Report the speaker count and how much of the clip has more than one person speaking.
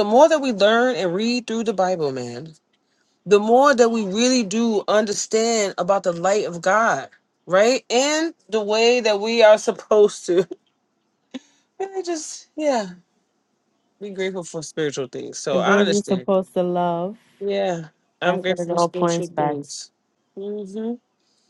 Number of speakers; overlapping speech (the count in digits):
2, about 9%